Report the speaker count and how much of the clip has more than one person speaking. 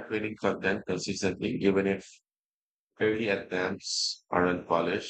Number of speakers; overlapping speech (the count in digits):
1, no overlap